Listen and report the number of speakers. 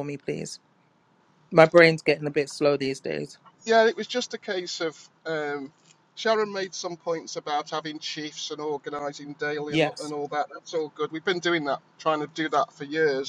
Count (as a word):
two